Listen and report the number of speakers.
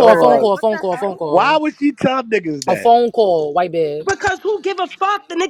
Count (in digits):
3